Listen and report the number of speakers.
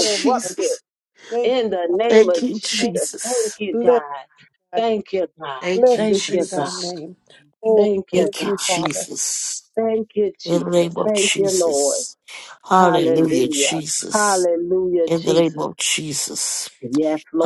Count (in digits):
3